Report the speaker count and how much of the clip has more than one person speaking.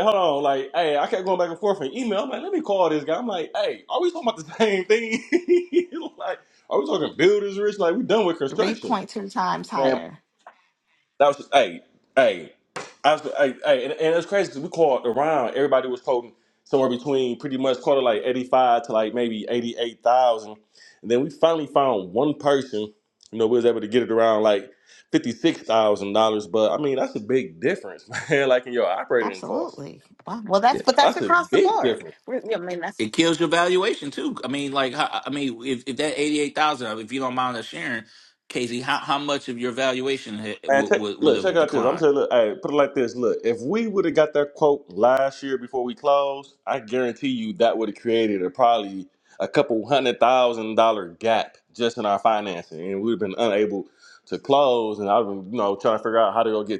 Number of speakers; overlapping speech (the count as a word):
three, about 6%